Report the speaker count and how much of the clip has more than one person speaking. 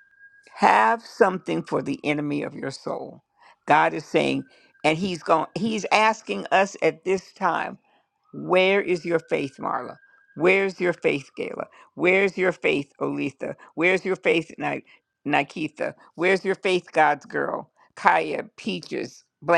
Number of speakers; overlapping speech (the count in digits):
1, no overlap